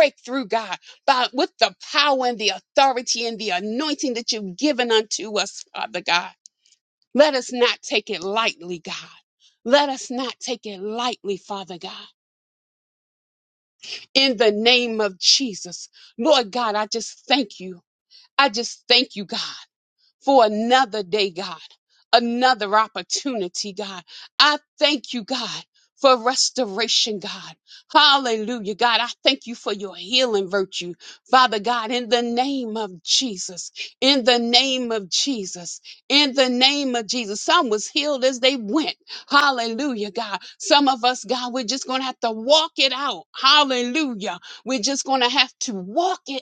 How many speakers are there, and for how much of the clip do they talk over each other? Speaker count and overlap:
one, no overlap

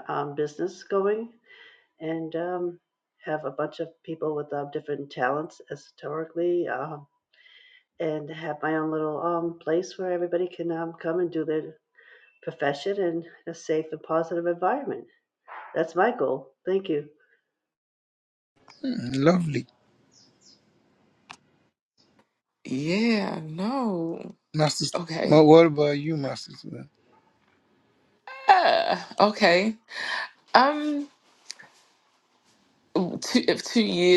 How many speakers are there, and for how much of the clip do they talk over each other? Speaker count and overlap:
three, about 1%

